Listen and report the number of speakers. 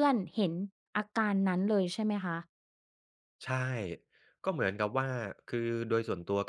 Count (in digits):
2